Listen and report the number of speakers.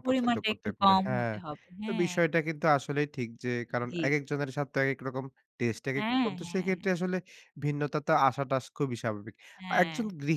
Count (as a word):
two